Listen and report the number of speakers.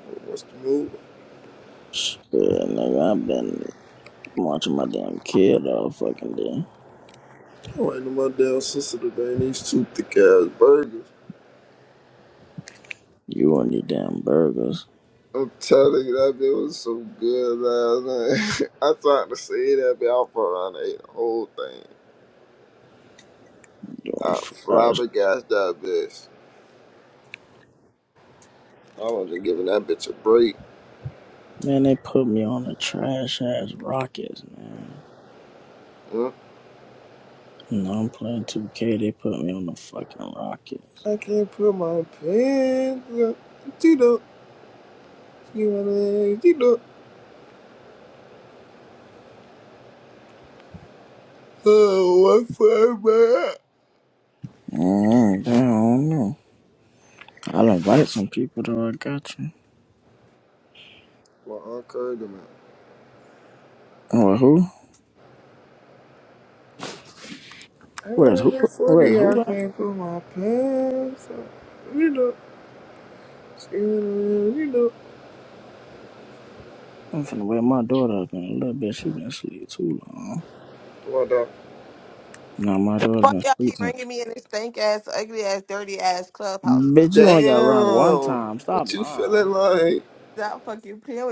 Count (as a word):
three